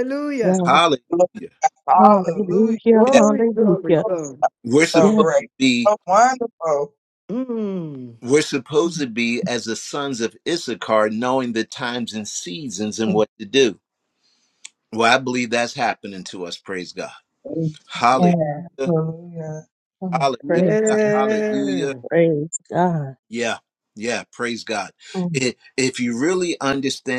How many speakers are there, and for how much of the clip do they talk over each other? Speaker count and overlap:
four, about 16%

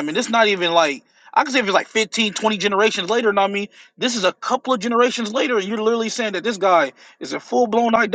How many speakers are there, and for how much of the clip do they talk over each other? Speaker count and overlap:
one, no overlap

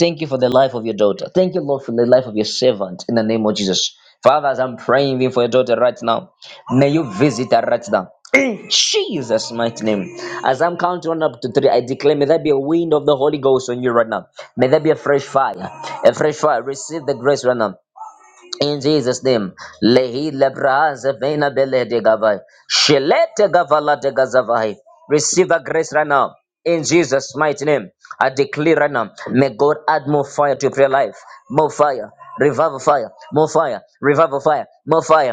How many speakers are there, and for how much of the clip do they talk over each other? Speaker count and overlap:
one, no overlap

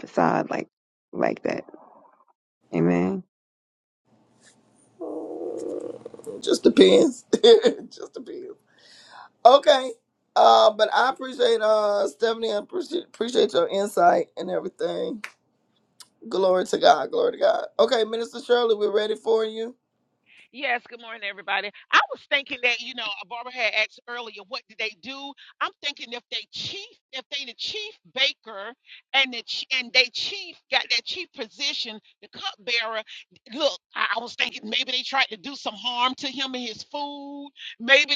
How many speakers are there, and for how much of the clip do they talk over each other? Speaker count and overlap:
three, no overlap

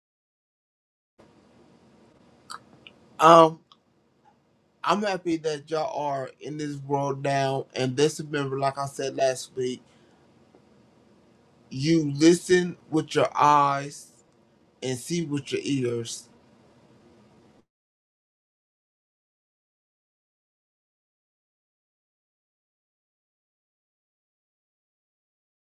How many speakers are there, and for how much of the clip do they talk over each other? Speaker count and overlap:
one, no overlap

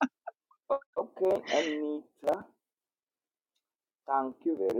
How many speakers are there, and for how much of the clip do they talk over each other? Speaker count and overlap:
one, no overlap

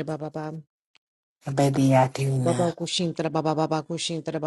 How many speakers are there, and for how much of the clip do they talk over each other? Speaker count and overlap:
two, about 7%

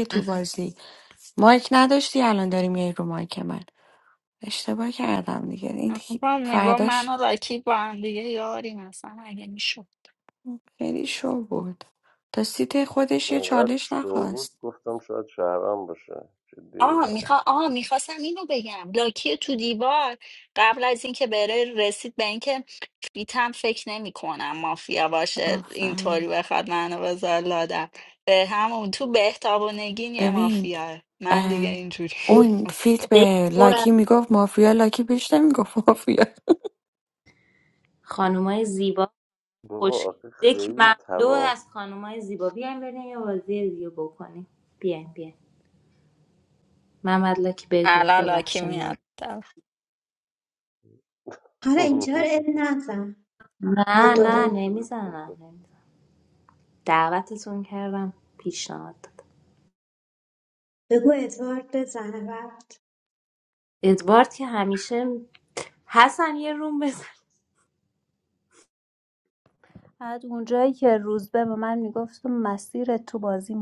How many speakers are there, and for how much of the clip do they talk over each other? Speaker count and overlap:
six, about 11%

